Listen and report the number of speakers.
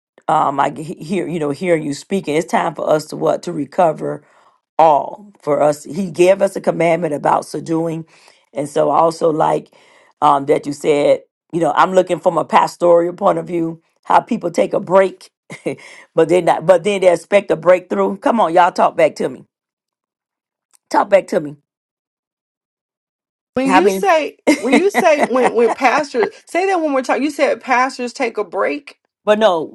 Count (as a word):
two